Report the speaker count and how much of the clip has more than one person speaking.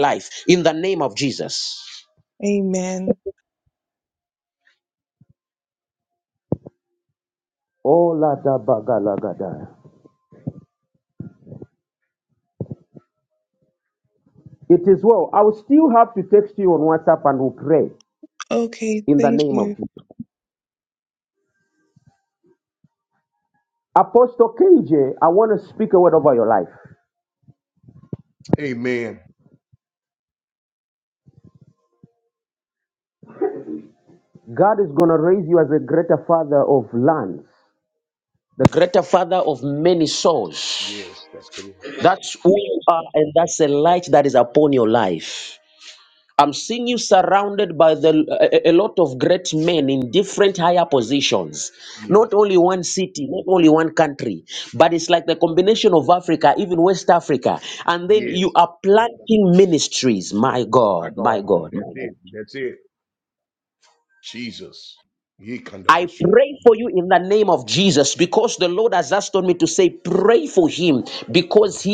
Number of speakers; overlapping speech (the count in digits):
3, about 4%